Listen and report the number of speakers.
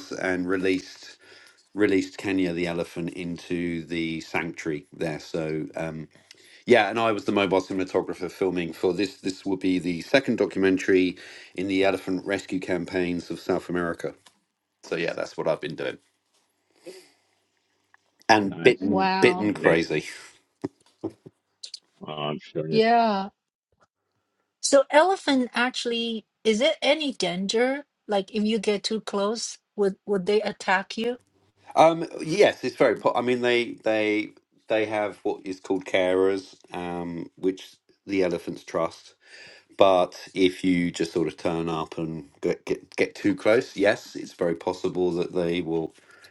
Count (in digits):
3